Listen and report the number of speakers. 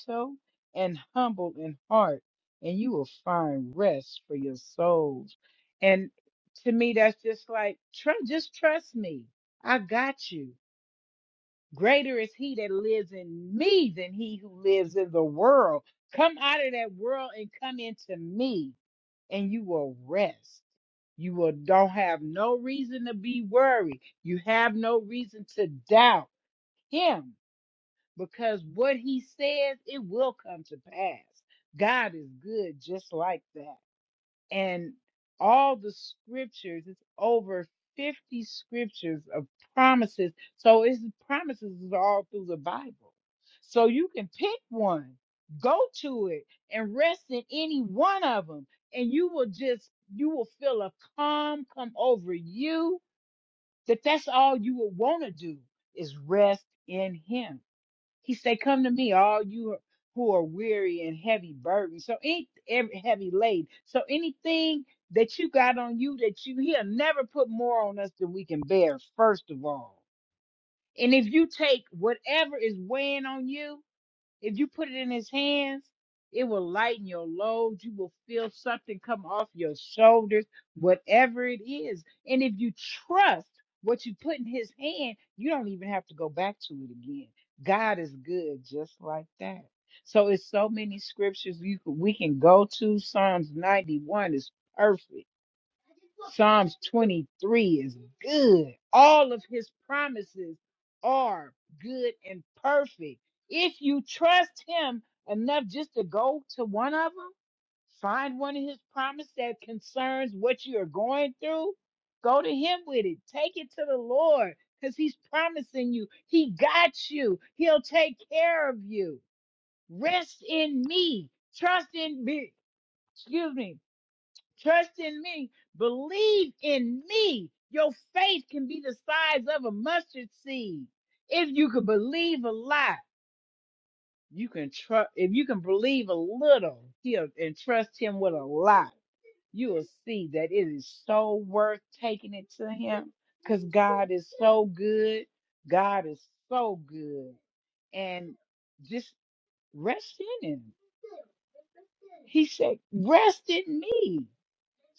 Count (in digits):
1